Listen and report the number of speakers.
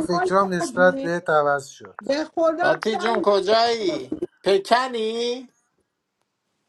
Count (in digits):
3